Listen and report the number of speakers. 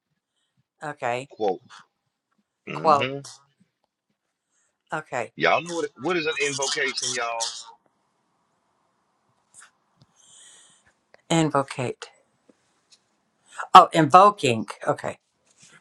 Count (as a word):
two